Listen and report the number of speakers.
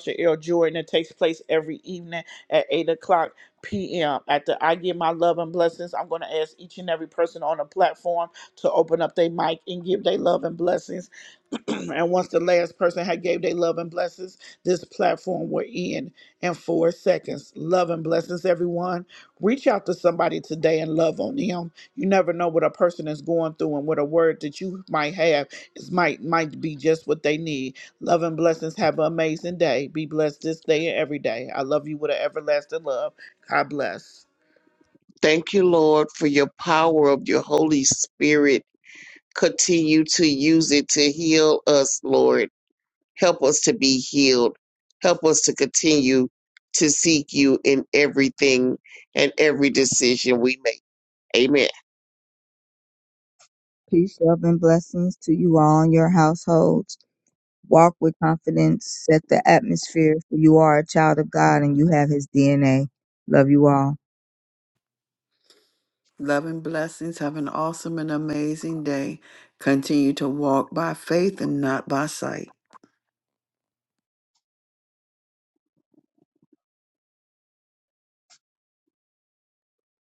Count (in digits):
4